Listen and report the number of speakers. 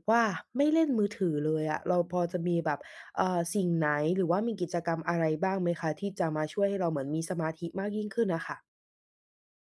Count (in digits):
1